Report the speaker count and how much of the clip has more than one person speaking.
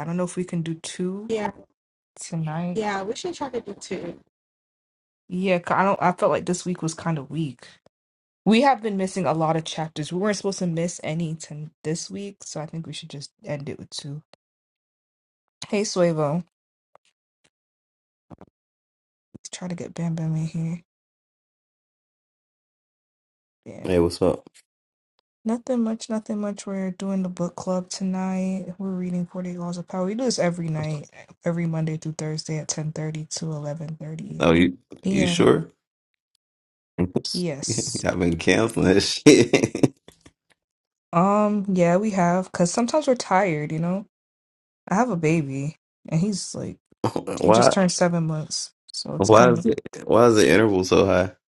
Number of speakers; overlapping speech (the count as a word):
three, about 4%